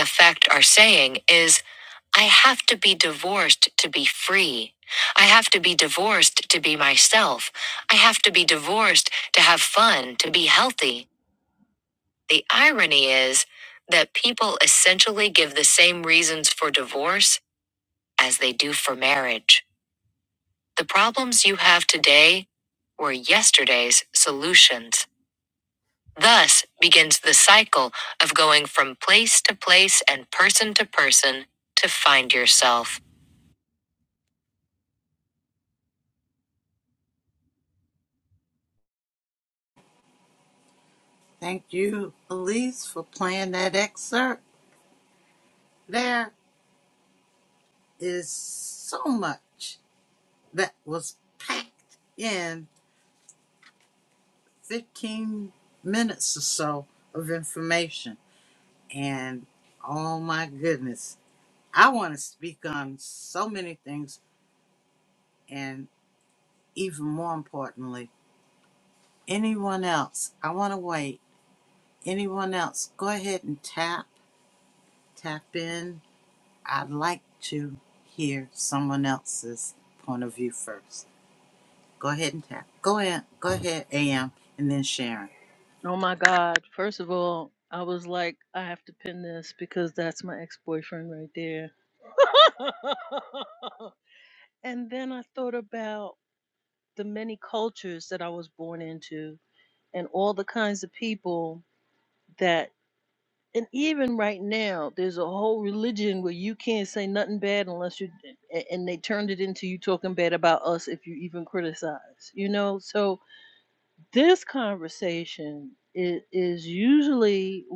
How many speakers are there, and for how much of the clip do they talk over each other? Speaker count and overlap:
three, no overlap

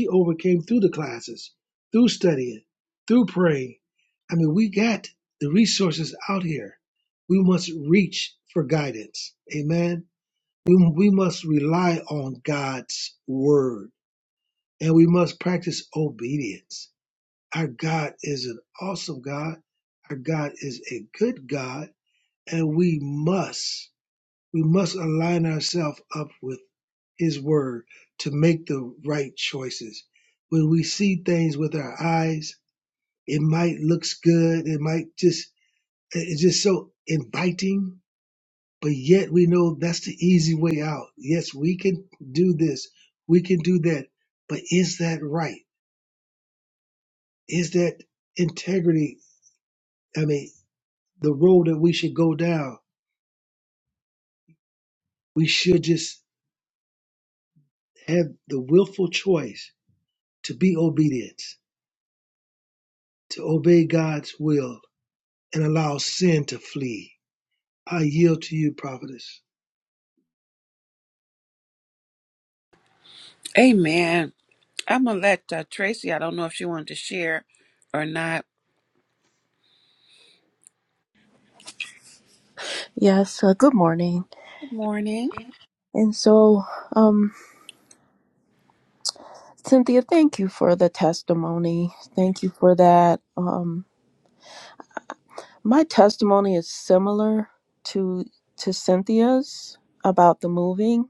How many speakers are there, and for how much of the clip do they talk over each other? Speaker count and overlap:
three, no overlap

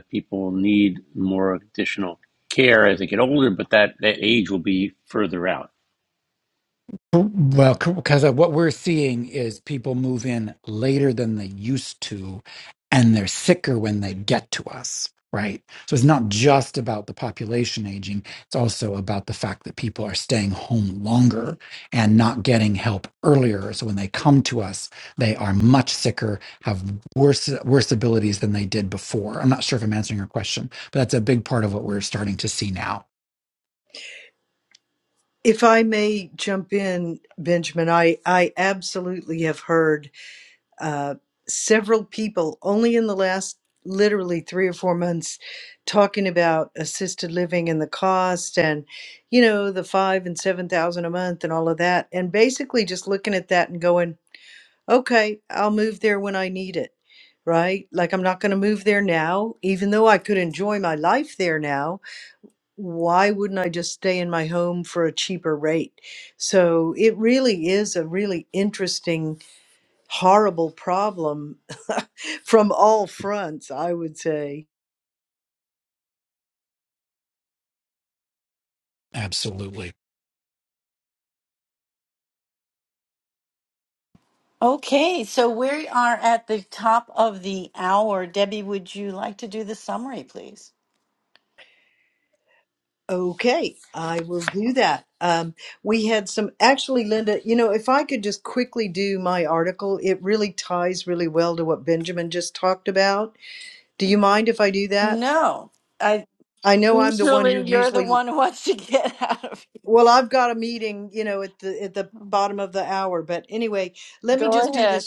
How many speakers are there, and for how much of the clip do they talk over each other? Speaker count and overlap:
four, about 2%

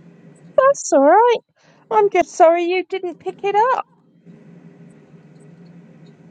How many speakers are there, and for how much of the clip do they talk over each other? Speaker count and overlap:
one, no overlap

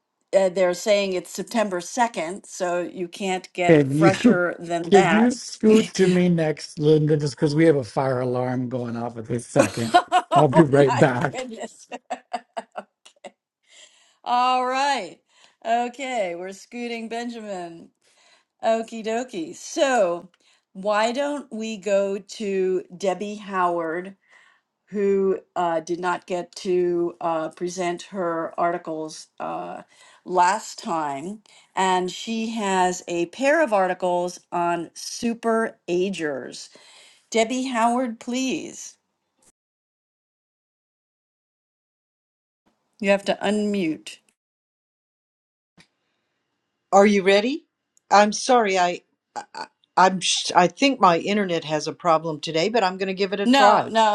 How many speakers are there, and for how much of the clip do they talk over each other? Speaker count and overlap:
three, about 5%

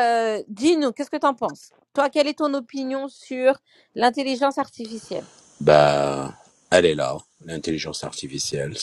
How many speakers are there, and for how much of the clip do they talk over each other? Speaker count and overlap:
two, no overlap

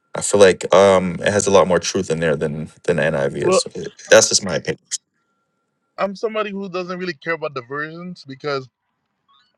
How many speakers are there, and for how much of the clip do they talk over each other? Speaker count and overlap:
two, about 2%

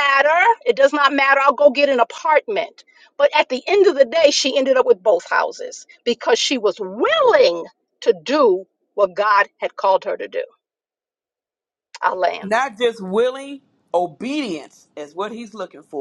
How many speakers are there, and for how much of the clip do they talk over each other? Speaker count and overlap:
two, under 1%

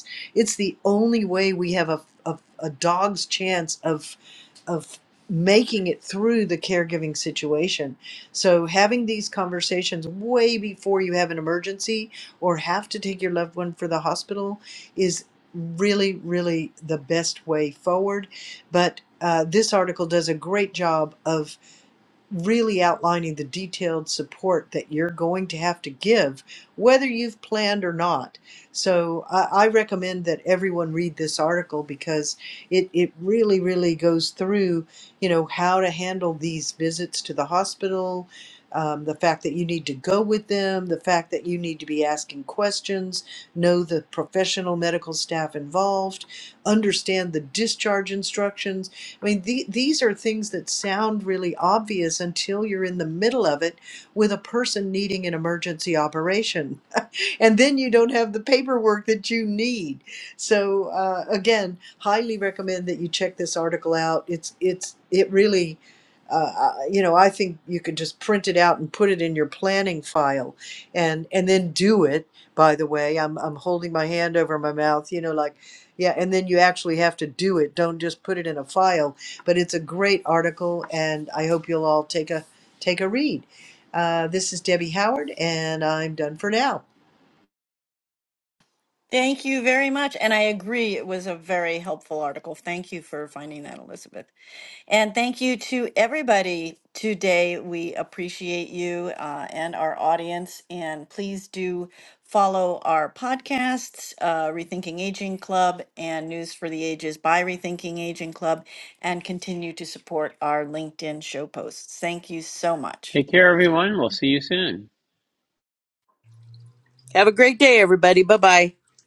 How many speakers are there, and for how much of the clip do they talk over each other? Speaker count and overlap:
four, under 1%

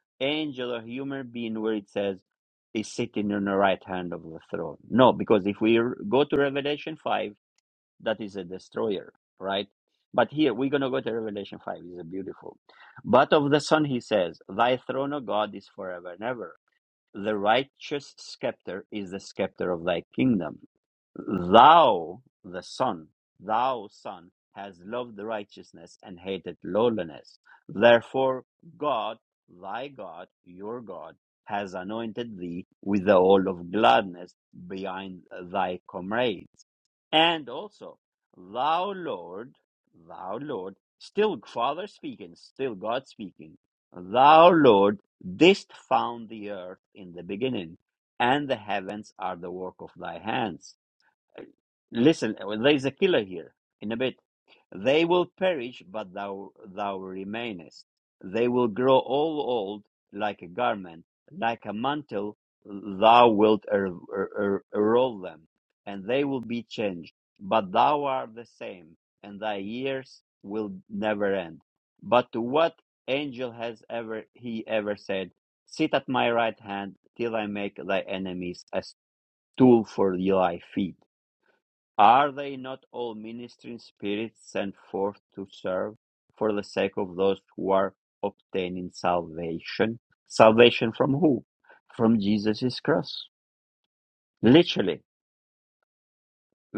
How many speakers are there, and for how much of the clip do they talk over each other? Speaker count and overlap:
one, no overlap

